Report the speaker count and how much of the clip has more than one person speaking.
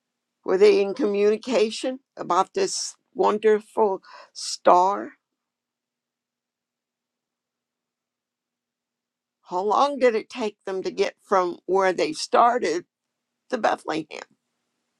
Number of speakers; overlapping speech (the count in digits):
1, no overlap